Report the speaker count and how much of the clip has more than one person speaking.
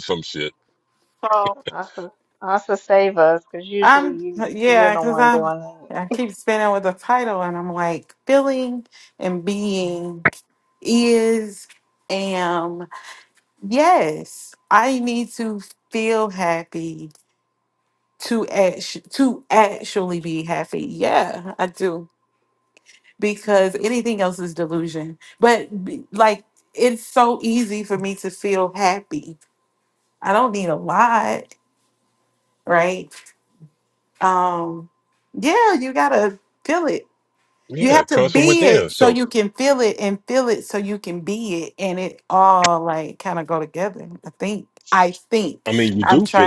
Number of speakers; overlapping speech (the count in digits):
3, about 7%